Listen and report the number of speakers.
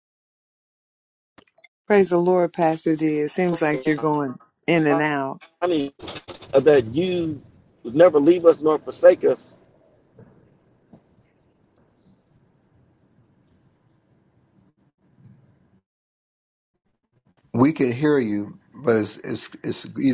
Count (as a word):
three